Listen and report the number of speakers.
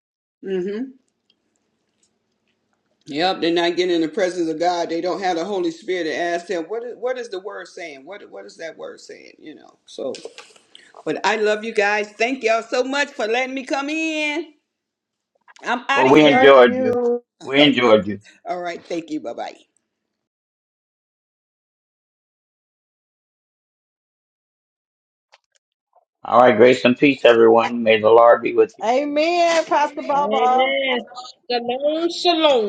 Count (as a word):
four